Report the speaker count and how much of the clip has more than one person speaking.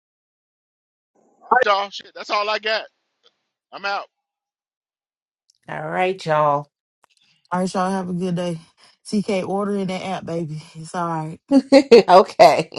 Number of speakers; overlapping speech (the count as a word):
three, no overlap